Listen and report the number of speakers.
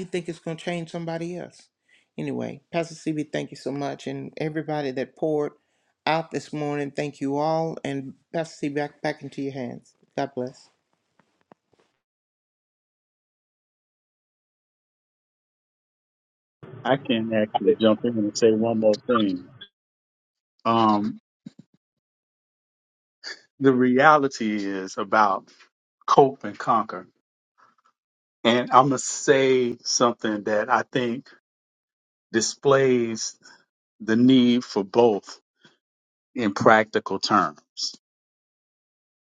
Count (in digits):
2